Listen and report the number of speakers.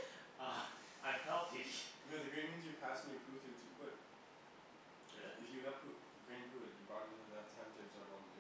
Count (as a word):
two